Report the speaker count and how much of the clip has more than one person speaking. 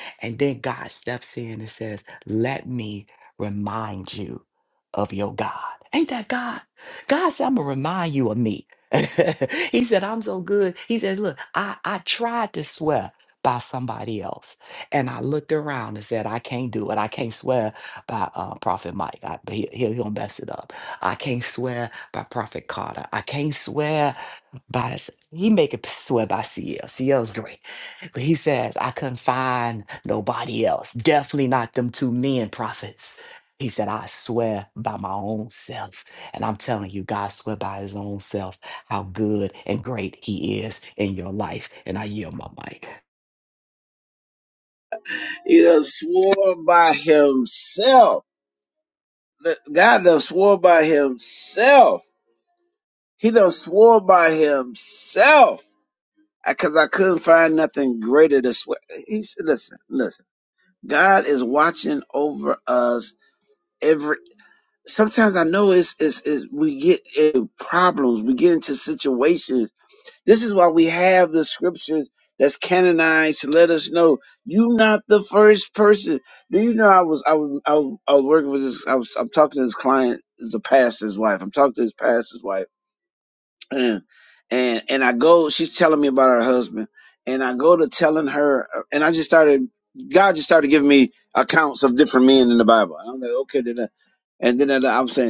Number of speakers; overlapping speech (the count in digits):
2, no overlap